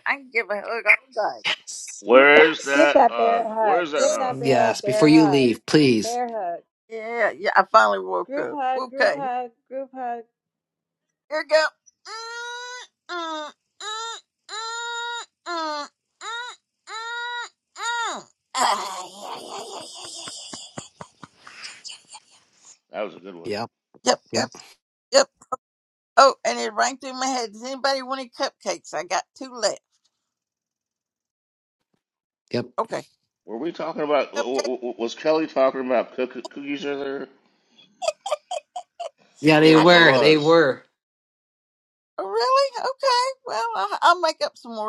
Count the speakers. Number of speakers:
four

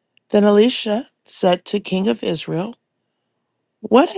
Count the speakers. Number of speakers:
one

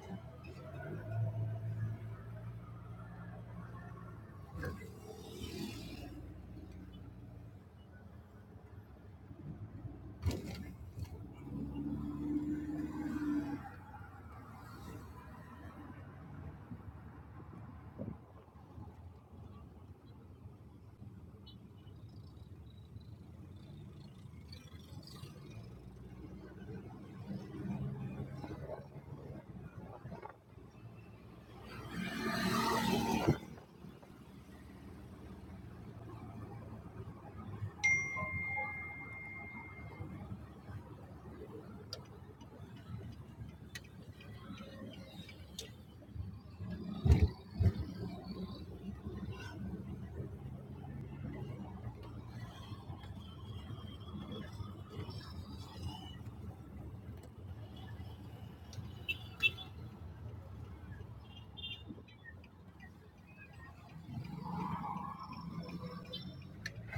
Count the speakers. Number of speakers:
zero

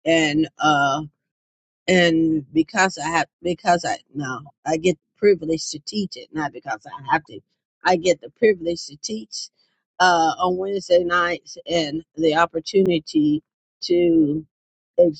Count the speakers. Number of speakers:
one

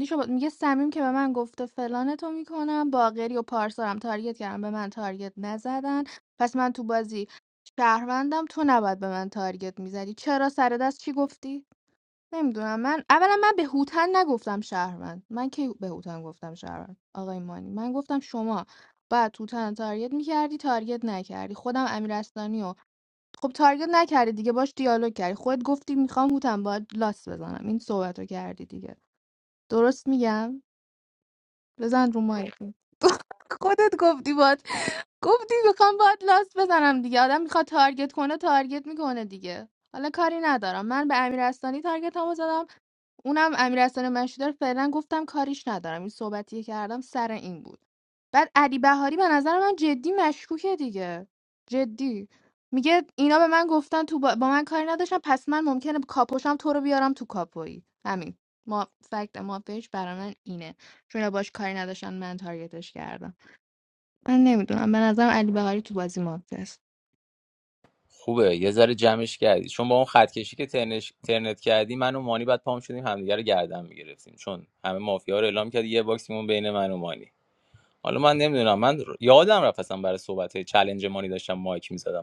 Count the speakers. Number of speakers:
two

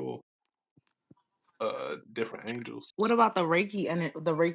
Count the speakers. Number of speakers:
two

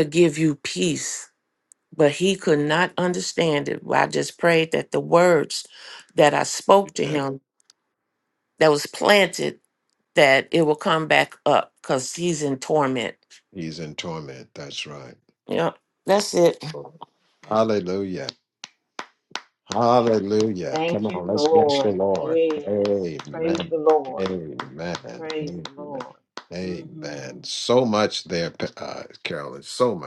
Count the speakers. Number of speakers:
three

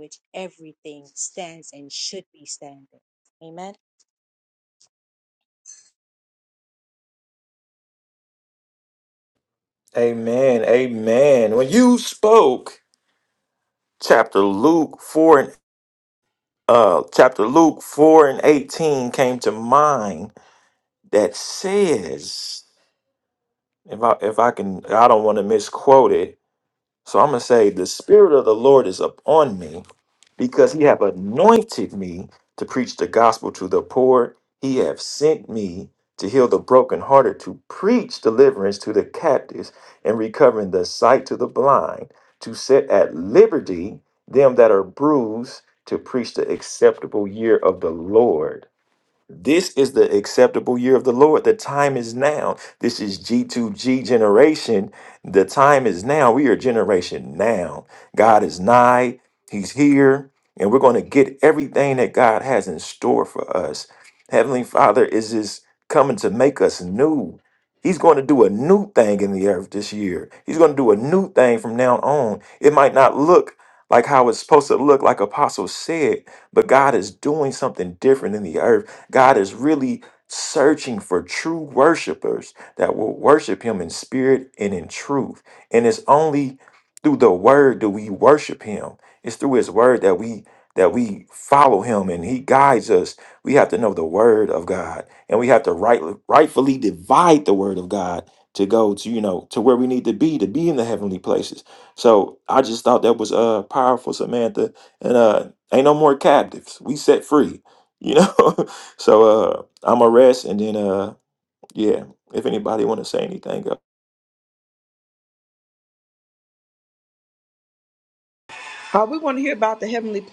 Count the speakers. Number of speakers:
three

